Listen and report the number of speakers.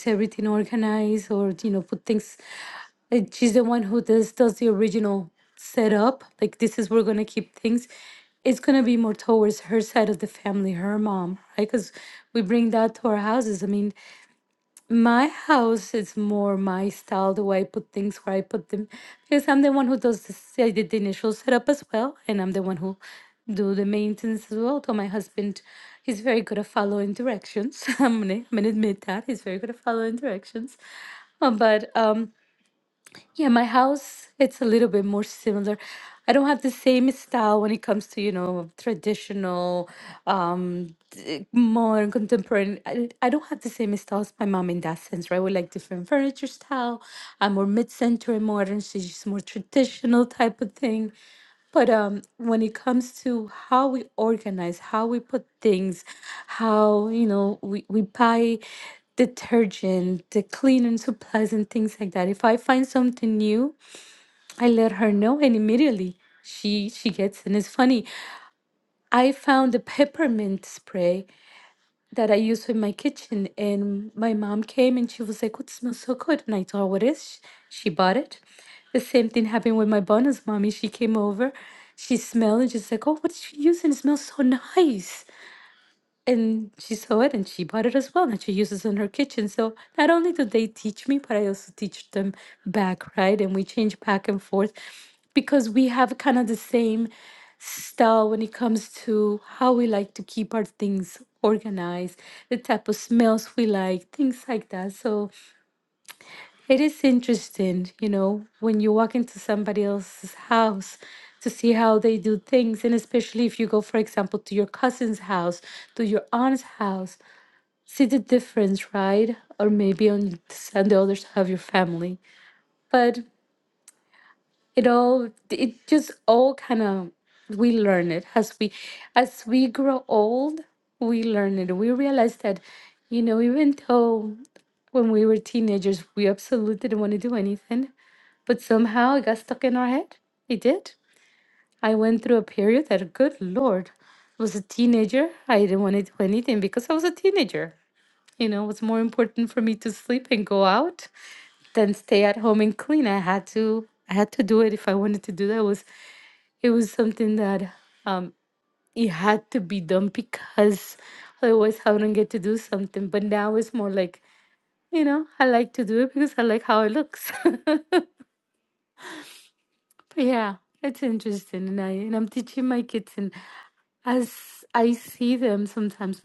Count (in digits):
1